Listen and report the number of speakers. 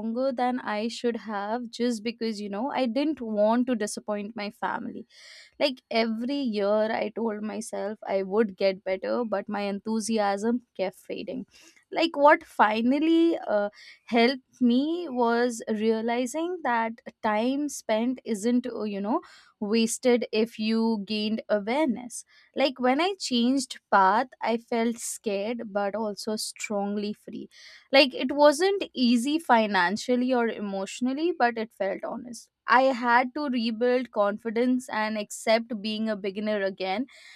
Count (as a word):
one